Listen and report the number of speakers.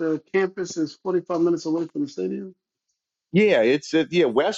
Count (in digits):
2